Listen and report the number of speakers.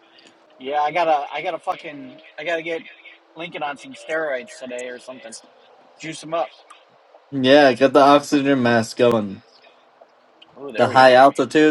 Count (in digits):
2